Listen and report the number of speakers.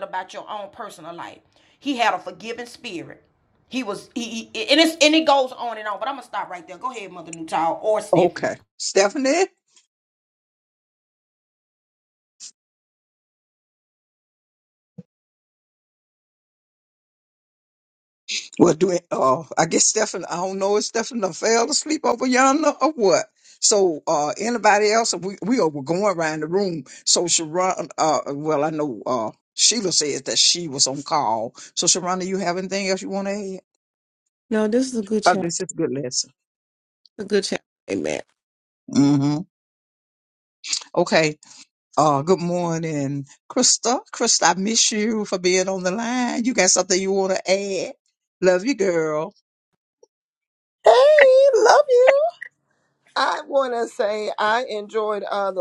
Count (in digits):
4